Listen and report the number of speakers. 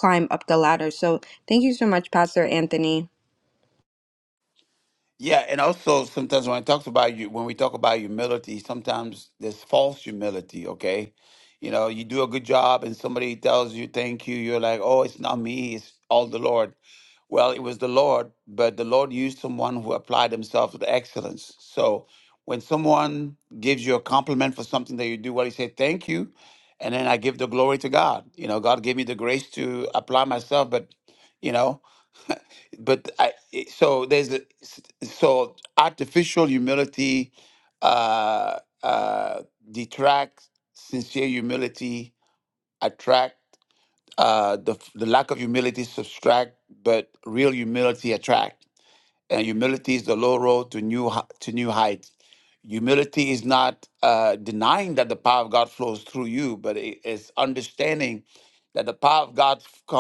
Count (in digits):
2